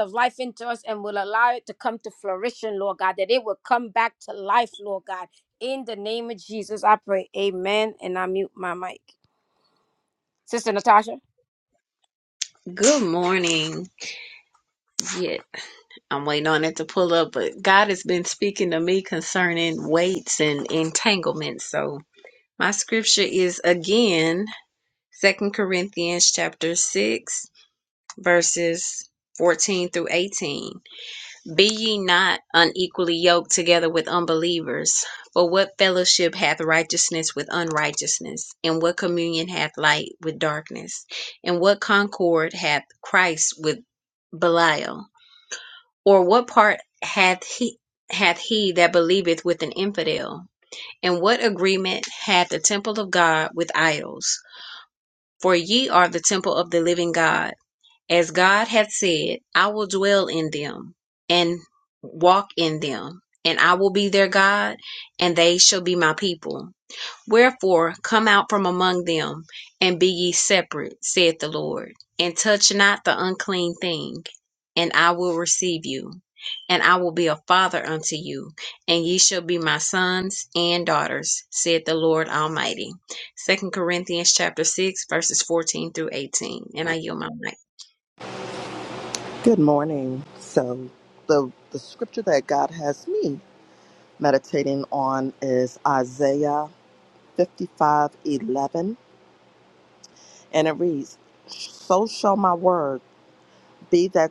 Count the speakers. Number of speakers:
three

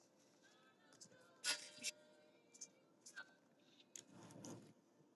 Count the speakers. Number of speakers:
zero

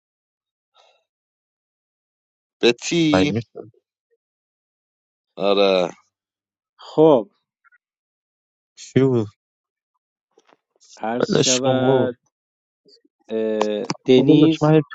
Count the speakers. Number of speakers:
three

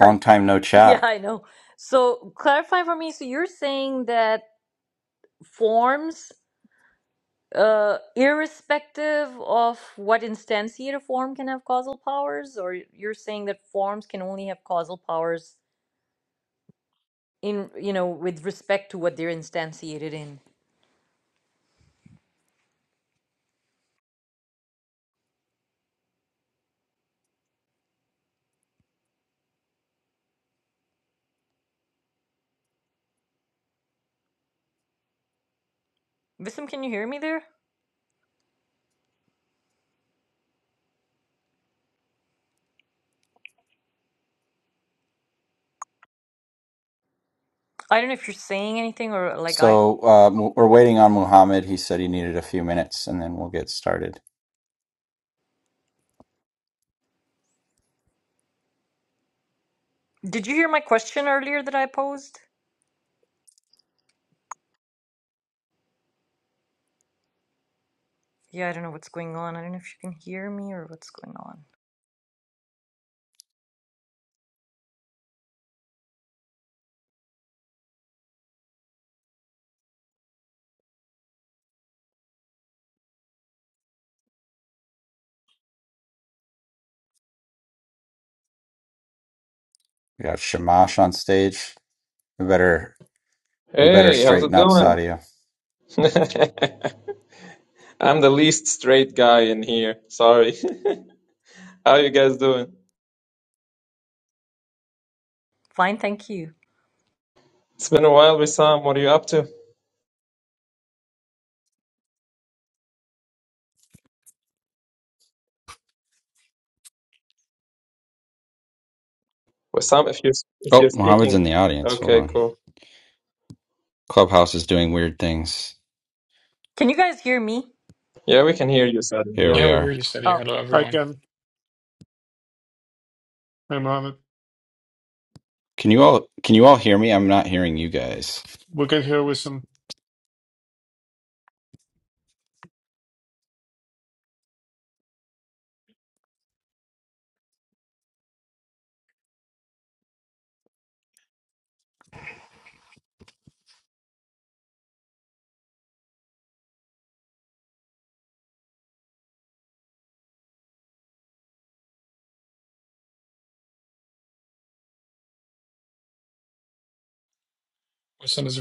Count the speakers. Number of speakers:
five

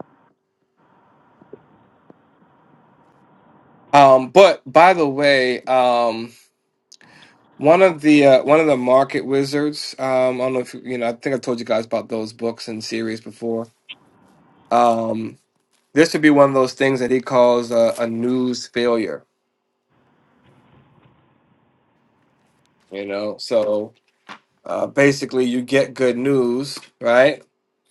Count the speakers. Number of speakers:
one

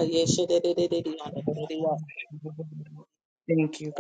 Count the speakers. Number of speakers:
two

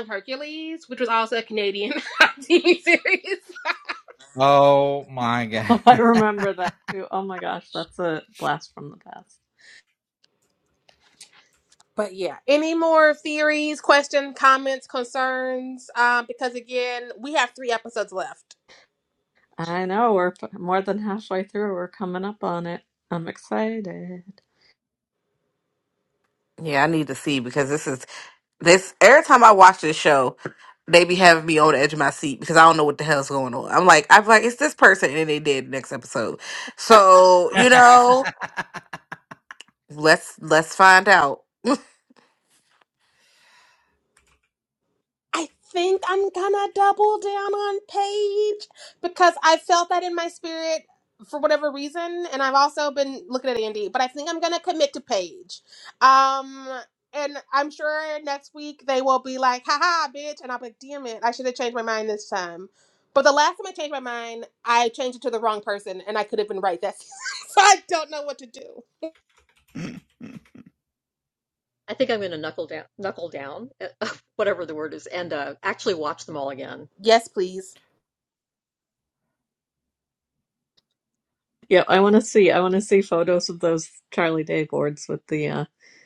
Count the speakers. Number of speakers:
five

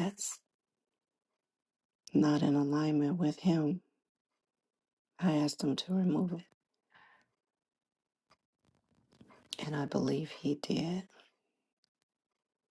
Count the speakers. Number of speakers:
one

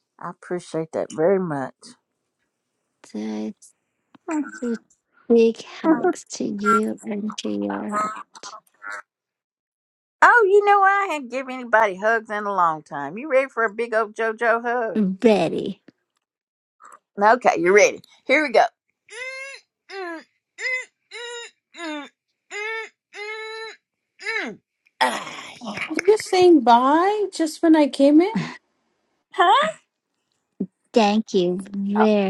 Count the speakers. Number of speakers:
three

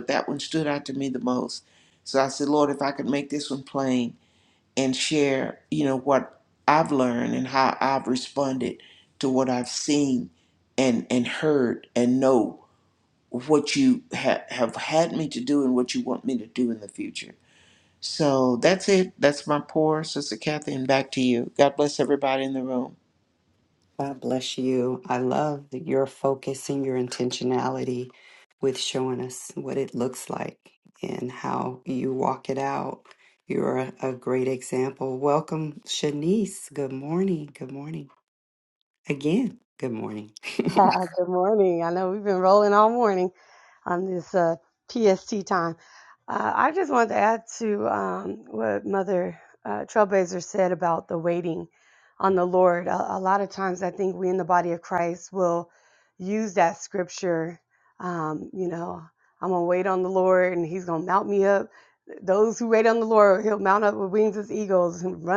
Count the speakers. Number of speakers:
three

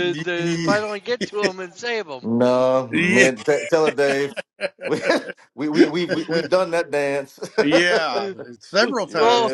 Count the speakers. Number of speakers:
three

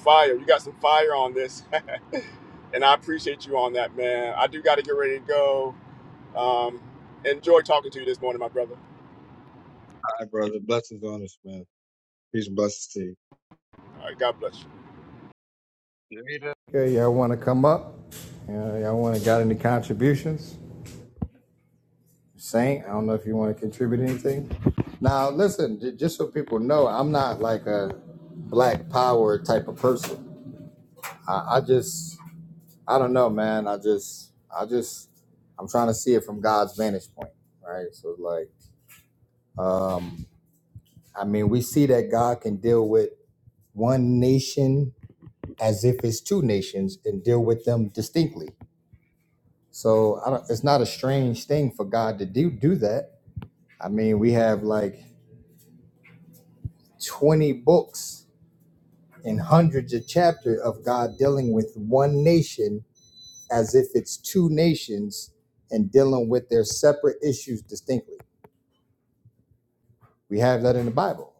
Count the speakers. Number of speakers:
two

